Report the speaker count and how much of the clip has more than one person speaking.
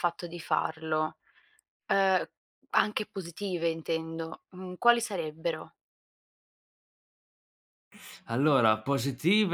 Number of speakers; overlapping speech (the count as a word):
two, no overlap